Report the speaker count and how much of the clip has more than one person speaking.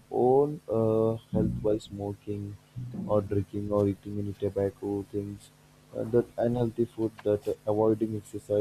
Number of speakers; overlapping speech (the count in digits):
1, no overlap